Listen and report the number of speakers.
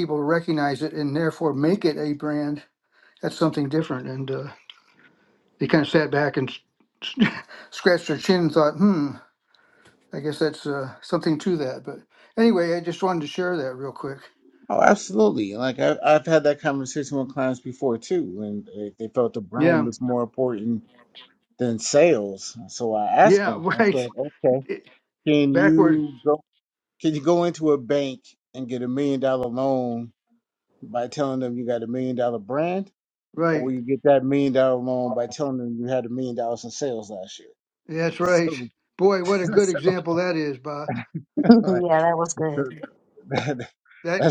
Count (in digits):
3